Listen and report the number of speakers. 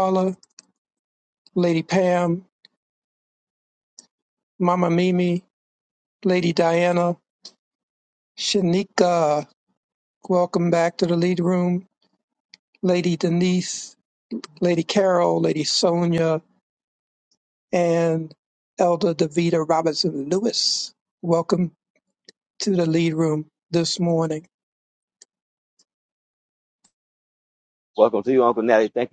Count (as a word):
two